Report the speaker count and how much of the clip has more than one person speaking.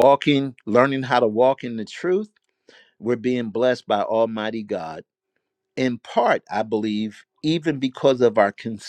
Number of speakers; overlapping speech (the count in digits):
1, no overlap